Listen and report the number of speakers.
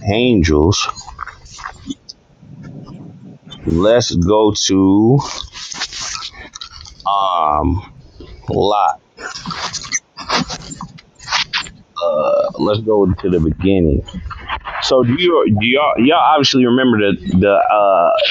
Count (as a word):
one